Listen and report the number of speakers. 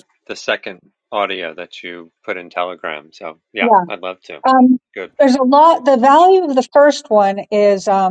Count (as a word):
two